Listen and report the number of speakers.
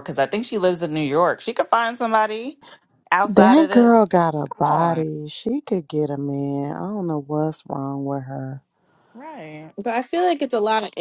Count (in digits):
3